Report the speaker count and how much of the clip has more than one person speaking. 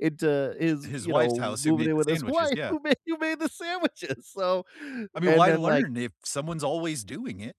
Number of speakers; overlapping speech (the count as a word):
two, about 33%